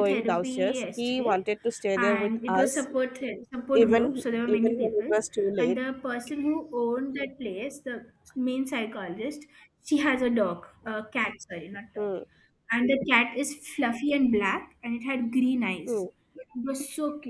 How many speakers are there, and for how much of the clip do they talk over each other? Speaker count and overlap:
2, about 20%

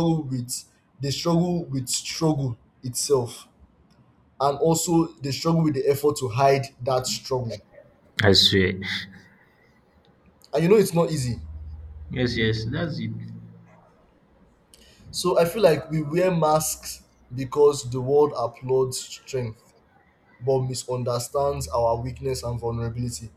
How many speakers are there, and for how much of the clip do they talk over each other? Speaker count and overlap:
2, no overlap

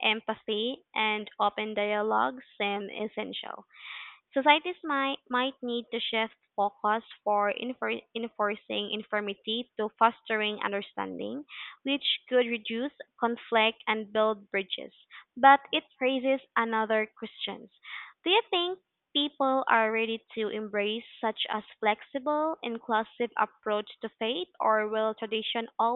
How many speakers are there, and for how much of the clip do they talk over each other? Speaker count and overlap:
1, no overlap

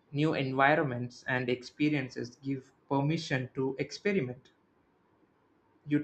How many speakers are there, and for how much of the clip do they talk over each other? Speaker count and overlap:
1, no overlap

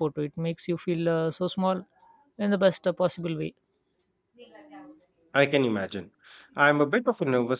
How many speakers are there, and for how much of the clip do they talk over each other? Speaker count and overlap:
2, no overlap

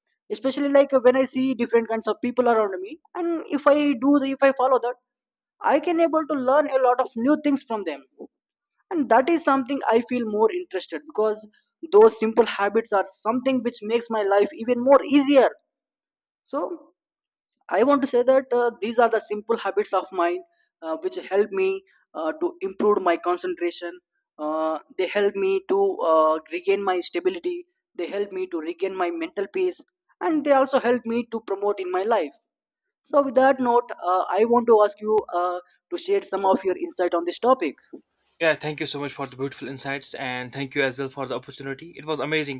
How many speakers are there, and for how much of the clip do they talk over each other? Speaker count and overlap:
2, no overlap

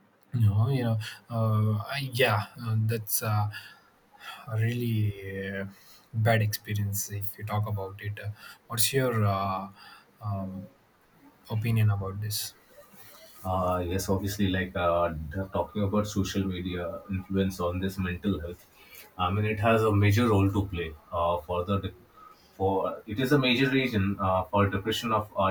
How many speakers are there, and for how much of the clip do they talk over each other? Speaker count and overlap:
2, no overlap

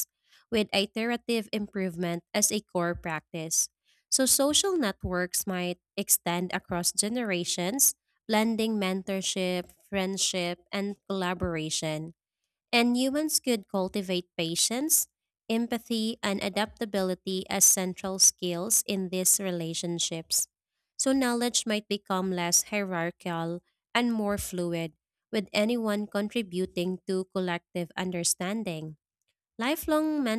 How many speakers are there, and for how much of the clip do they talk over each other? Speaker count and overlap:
1, no overlap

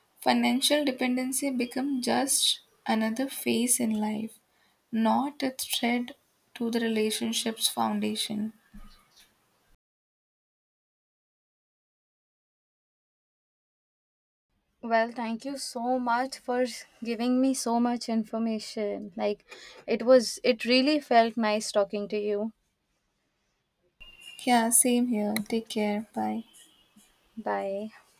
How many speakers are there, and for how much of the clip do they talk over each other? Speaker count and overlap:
2, no overlap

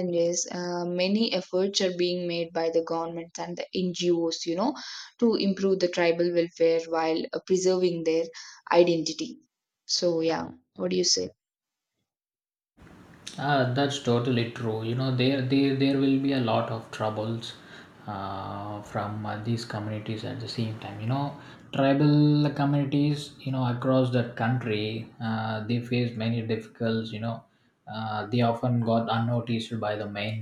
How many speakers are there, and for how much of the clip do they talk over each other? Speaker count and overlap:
2, no overlap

